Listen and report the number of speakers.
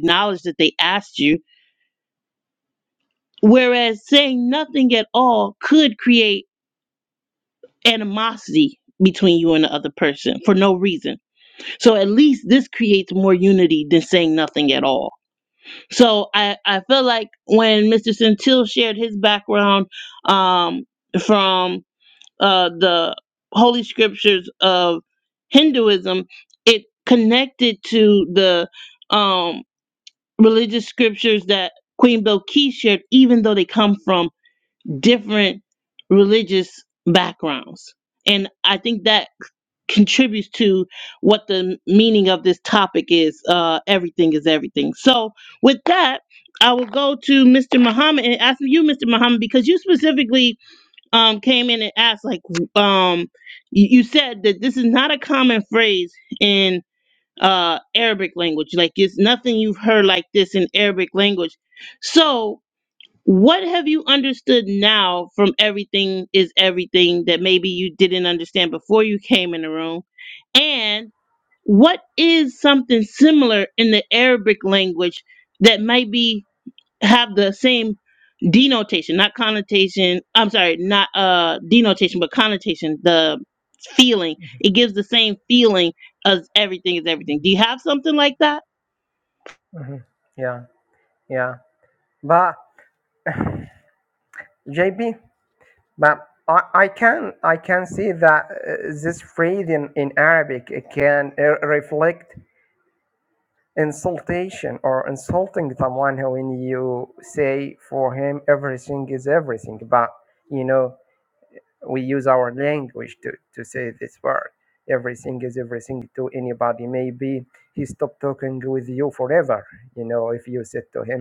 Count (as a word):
two